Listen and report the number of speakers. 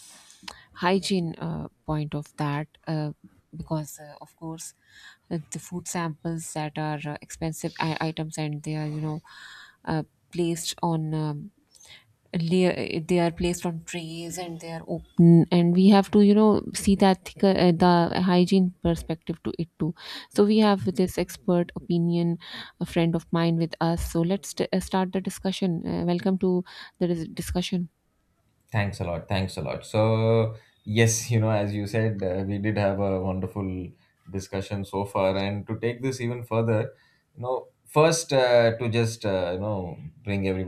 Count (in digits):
2